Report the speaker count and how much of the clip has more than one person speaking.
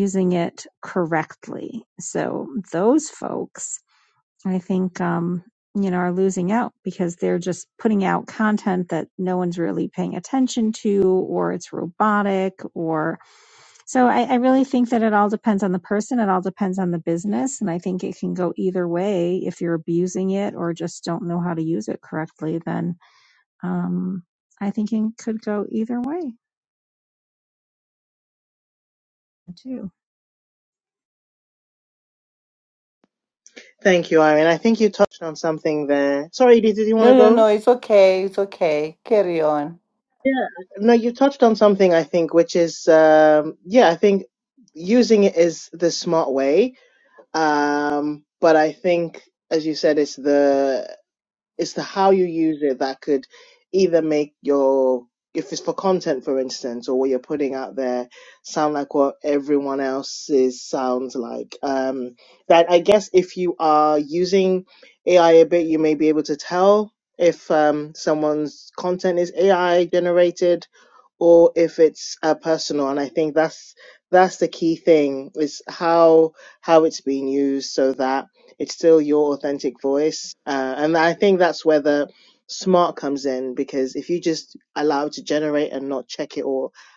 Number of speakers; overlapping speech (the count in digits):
3, about 1%